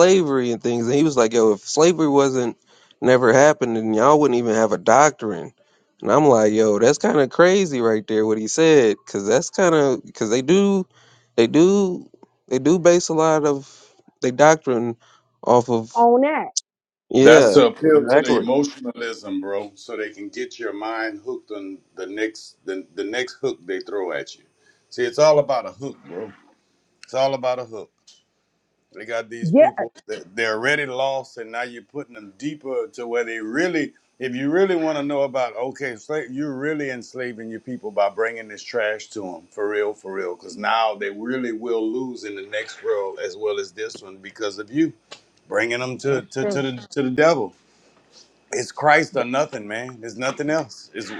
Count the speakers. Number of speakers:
3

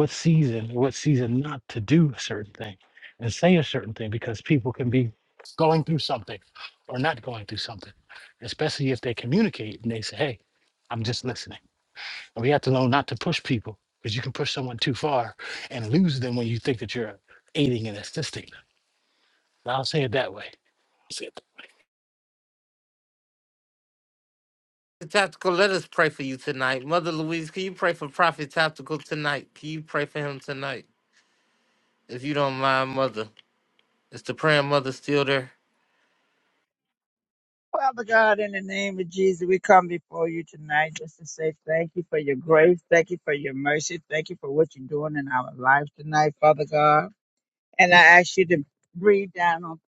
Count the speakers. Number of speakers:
3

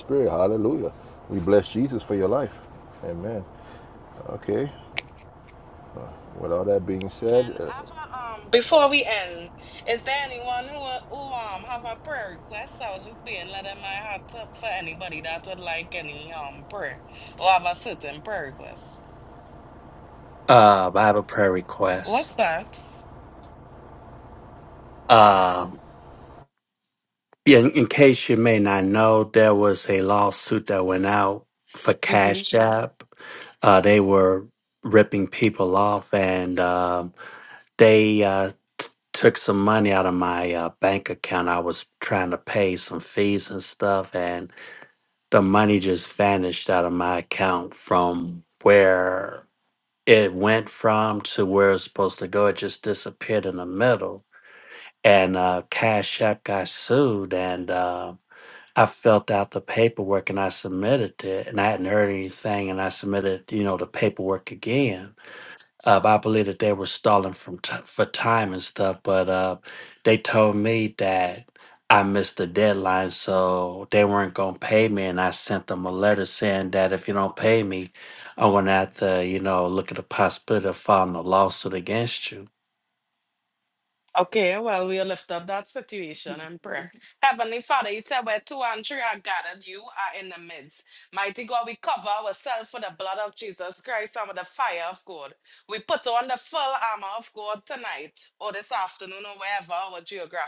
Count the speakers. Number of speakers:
3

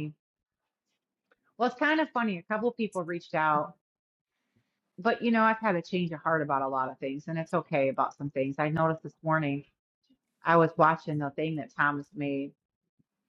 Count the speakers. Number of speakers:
1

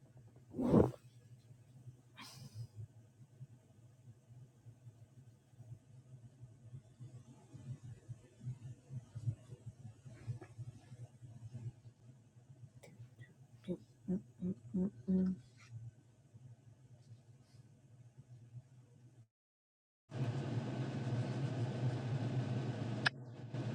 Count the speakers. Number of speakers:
0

